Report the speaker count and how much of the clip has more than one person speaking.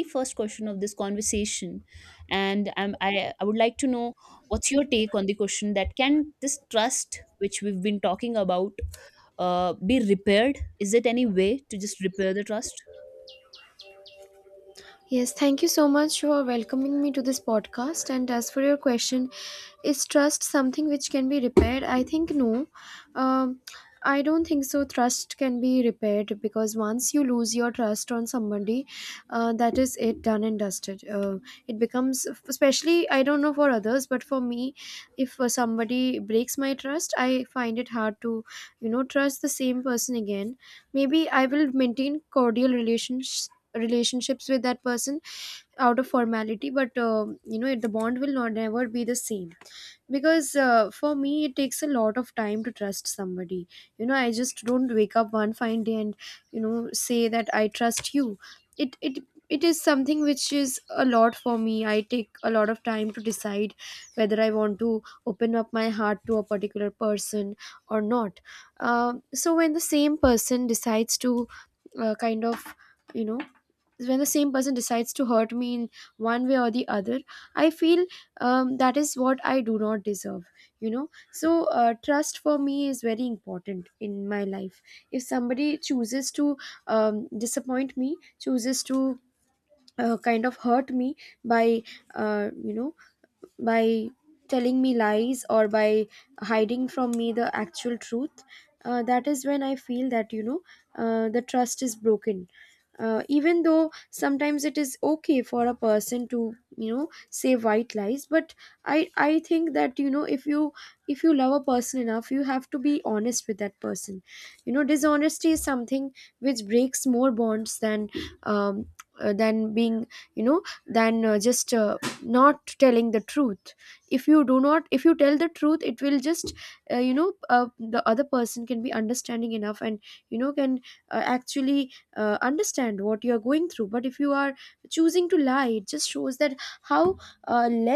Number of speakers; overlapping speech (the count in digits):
2, no overlap